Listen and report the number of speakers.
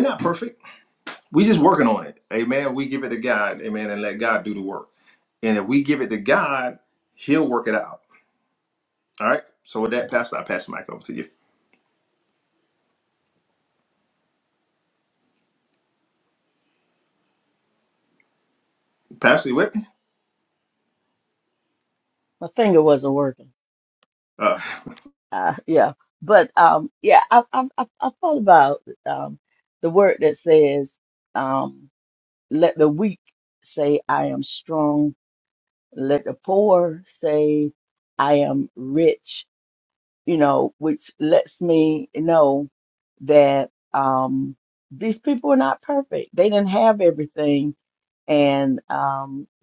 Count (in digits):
2